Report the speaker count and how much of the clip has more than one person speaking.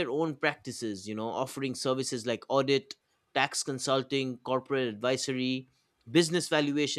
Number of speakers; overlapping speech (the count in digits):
1, no overlap